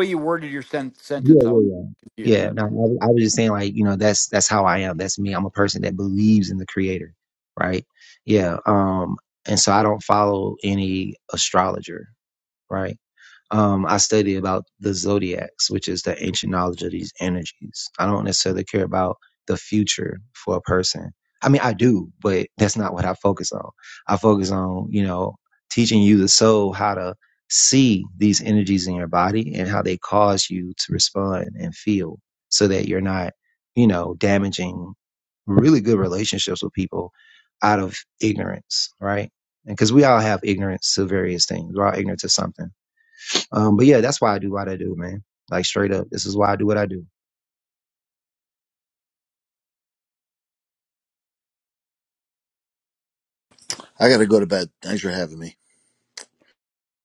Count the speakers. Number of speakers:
3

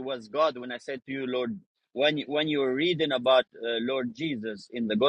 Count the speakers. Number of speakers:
1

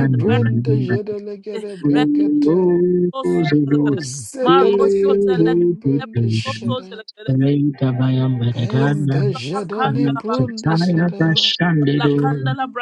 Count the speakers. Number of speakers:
3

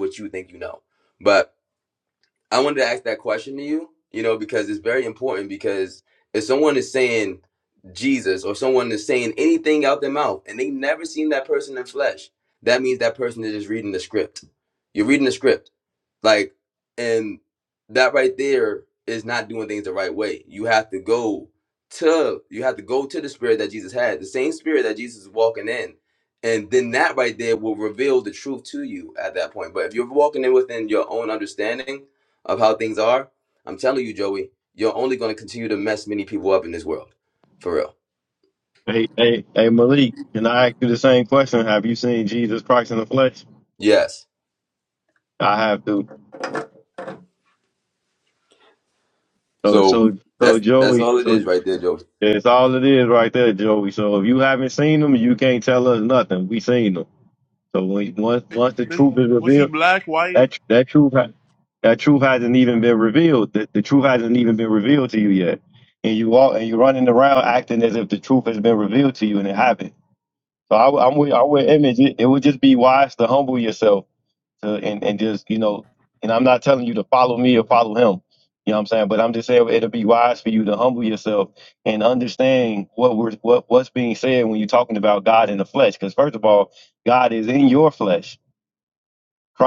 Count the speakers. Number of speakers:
3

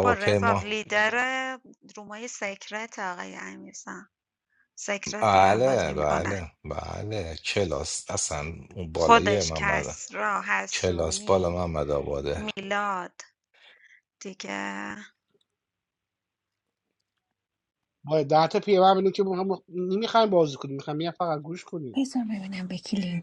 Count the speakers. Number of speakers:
4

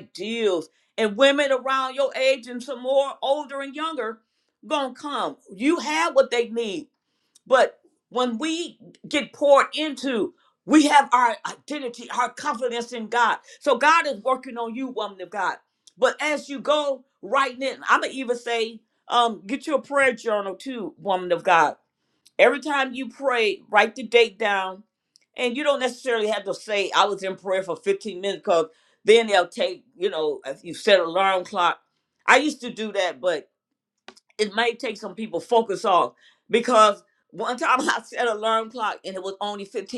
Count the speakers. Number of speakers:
1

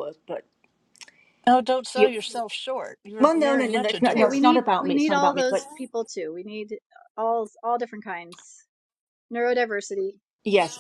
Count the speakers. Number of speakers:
3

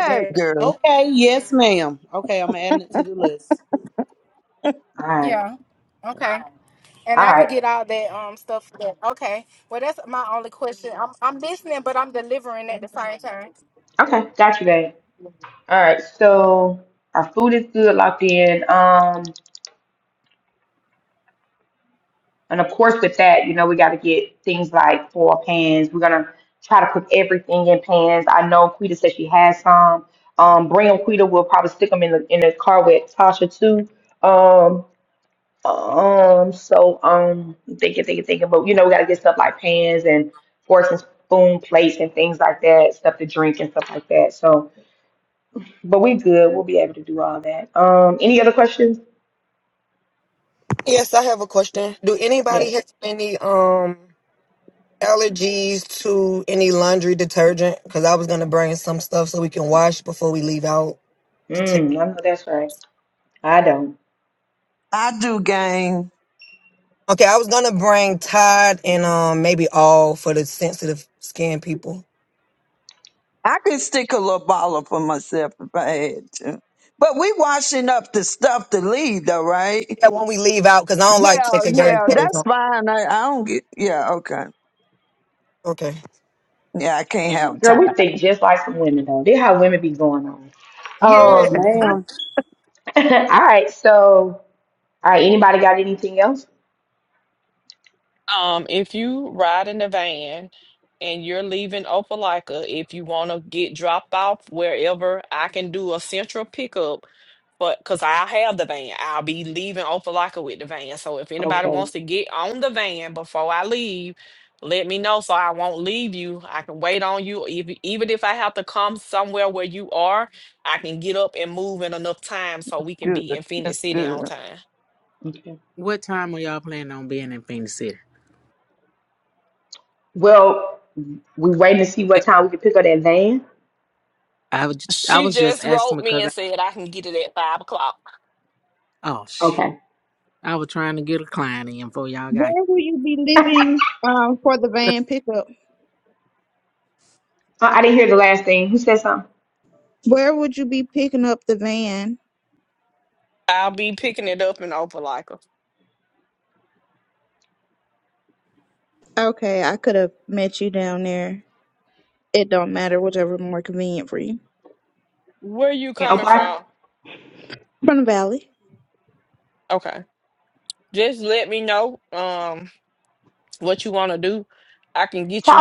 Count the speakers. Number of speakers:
8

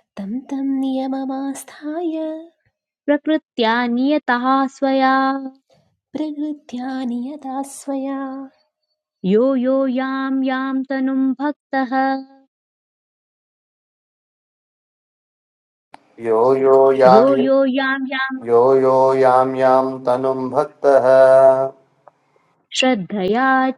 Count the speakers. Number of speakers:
3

